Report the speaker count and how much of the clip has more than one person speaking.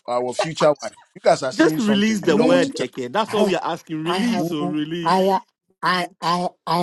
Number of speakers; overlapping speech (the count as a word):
three, about 34%